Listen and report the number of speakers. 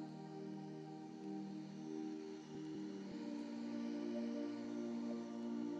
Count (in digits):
0